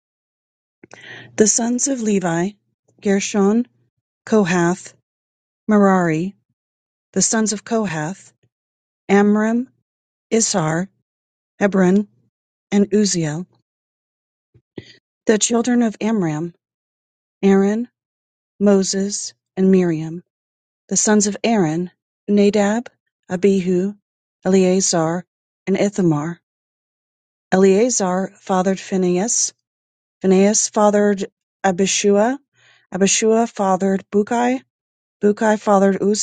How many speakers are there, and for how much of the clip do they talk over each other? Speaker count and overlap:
one, no overlap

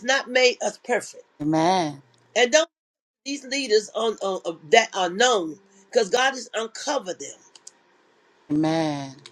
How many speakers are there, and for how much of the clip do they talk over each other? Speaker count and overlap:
two, no overlap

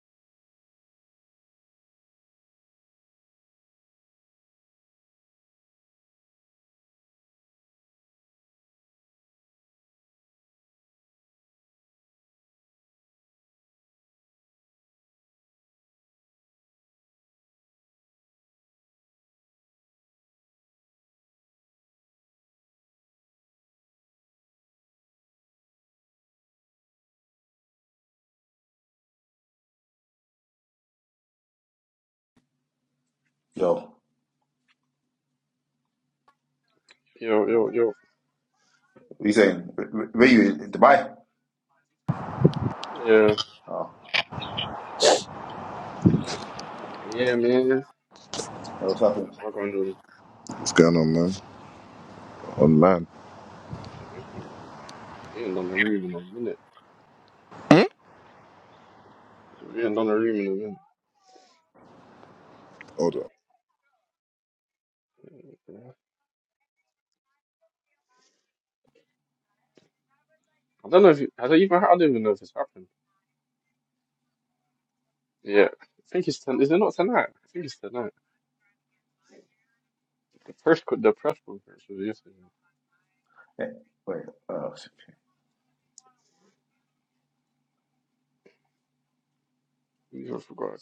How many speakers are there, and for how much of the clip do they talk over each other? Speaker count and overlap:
three, no overlap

